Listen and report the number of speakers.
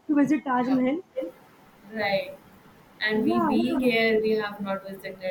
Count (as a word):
two